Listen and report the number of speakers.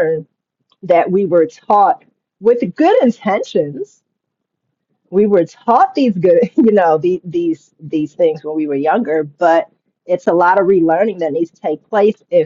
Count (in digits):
1